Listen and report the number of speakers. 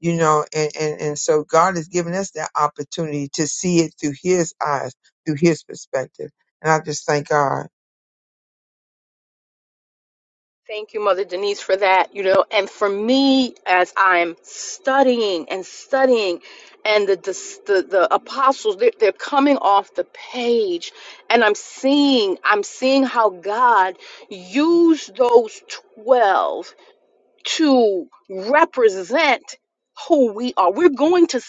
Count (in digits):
2